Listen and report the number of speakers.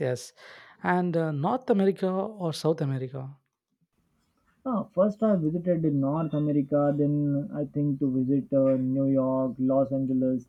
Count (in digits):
2